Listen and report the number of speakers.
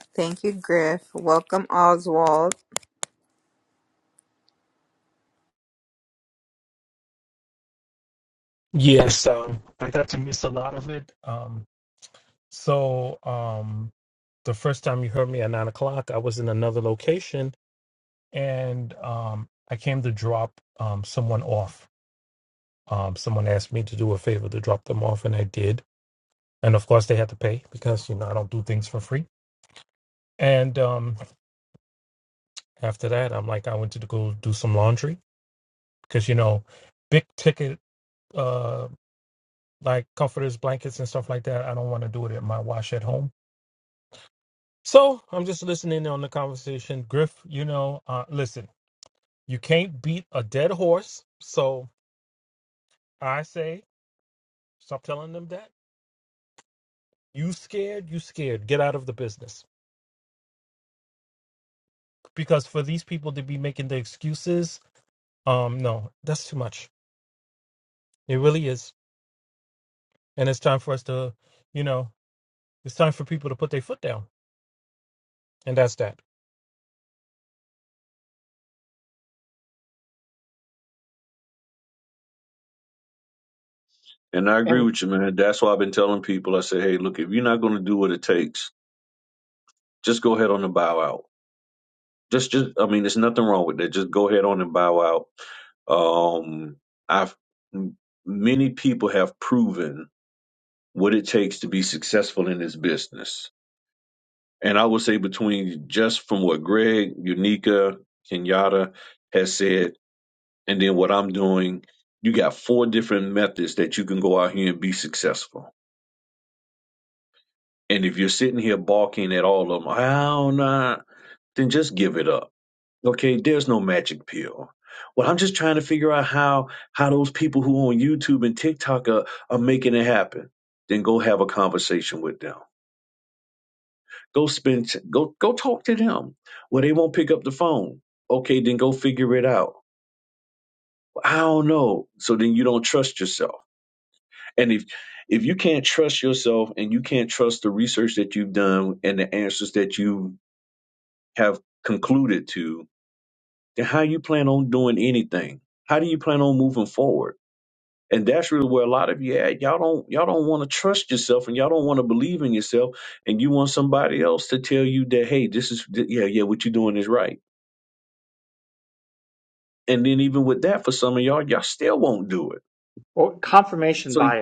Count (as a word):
four